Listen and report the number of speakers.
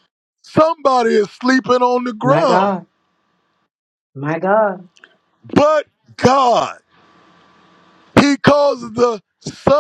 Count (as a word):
two